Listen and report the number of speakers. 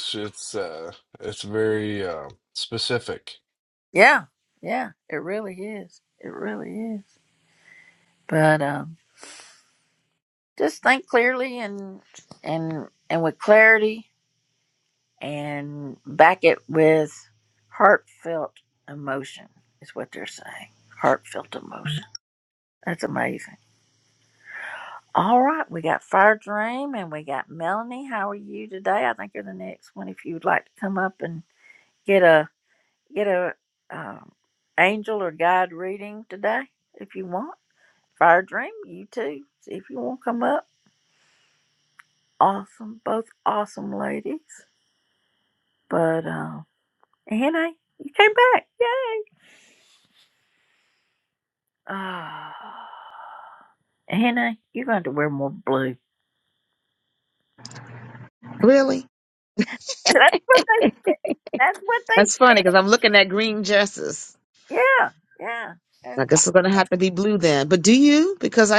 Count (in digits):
3